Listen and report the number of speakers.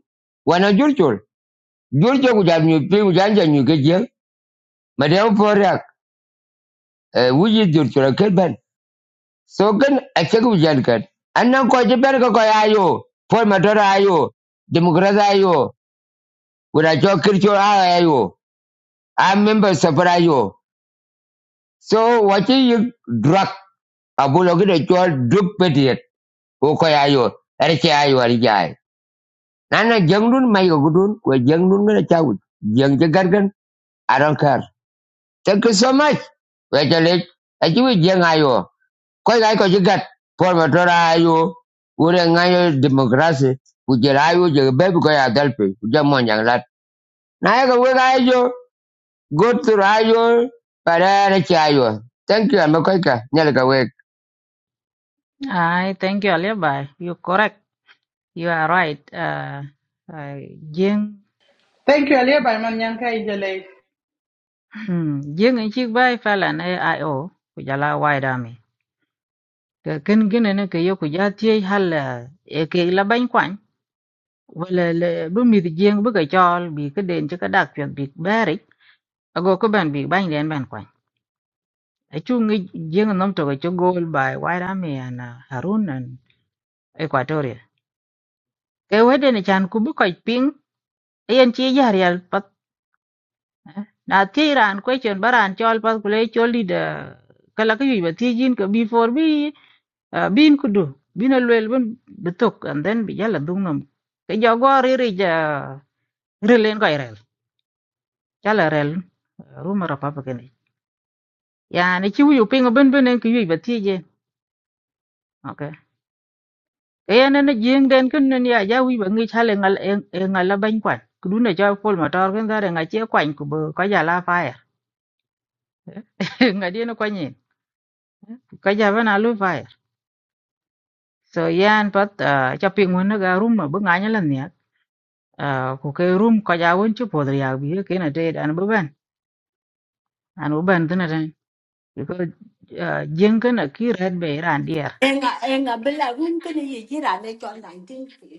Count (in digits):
4